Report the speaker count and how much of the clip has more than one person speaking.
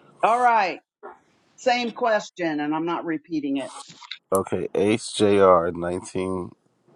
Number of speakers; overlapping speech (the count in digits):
2, no overlap